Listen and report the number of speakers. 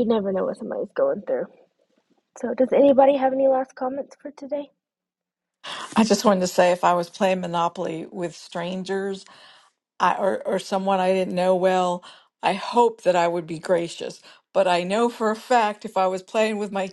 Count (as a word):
two